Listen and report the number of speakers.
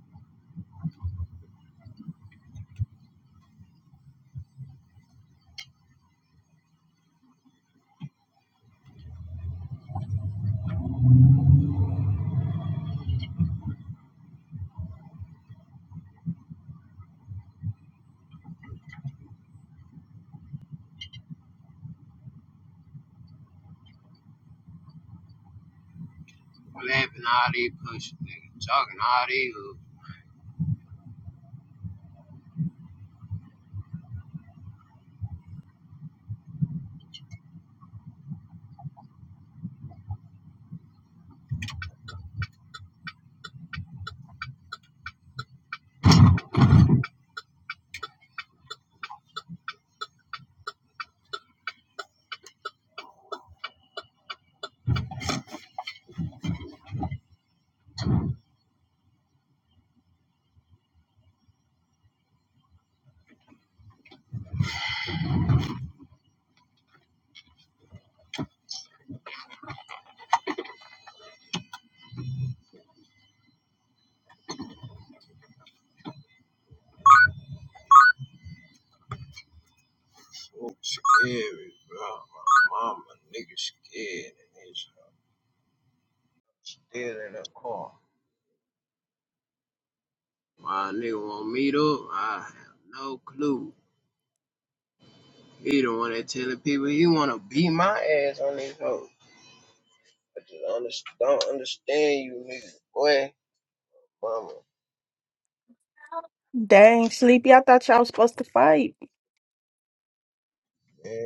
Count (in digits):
2